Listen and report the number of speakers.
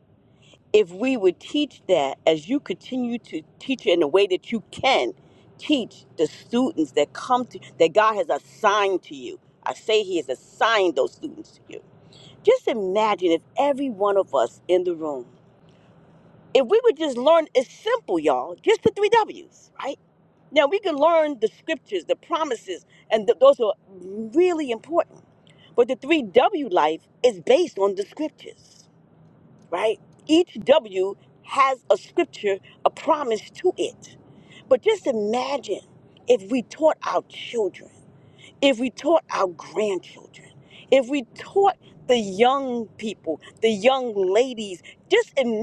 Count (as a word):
one